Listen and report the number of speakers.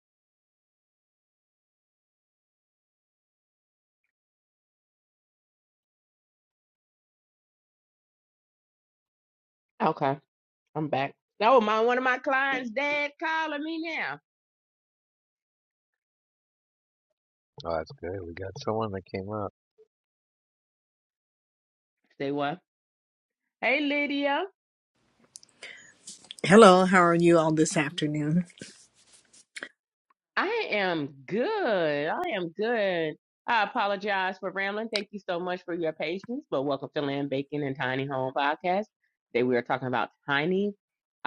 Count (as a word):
three